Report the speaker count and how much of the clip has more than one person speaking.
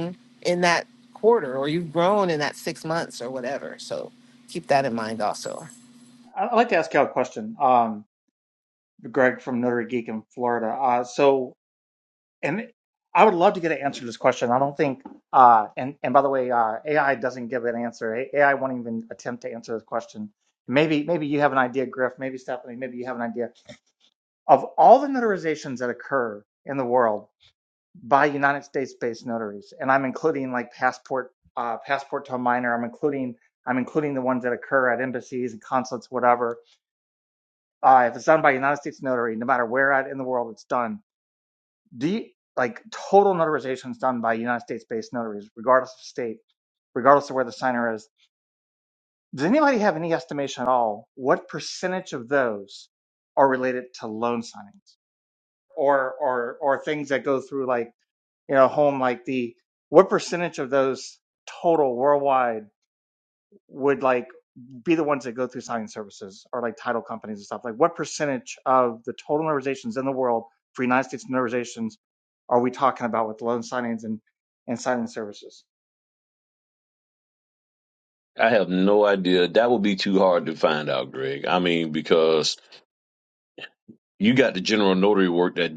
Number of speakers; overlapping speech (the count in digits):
3, no overlap